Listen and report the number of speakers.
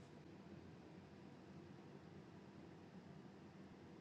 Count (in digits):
0